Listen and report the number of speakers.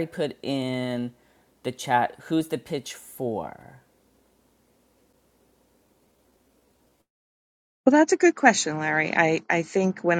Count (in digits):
2